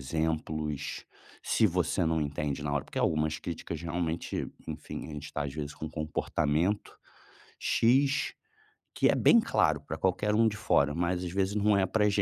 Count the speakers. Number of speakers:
1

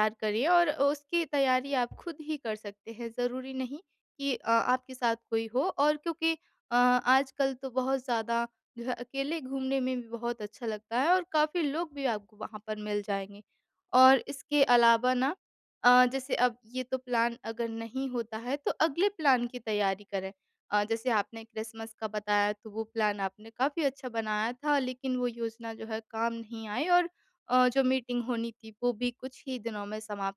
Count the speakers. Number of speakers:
1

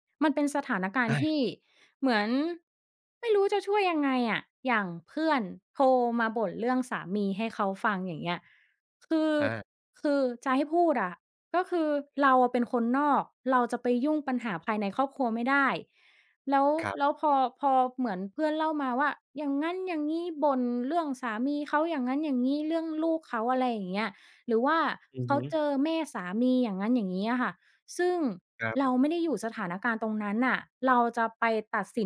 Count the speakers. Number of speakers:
2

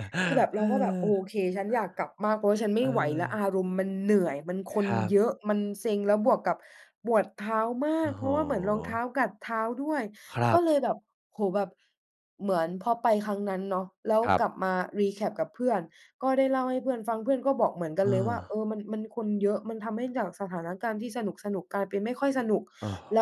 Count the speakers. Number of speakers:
2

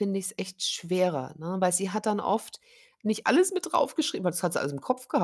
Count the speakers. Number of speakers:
1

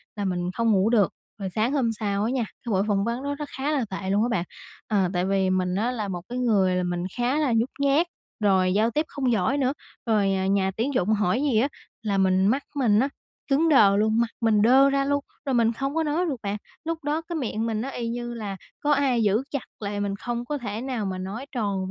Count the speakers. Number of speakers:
1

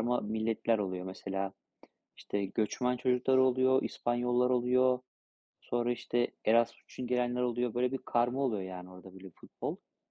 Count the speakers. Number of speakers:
1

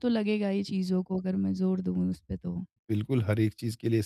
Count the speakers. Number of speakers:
2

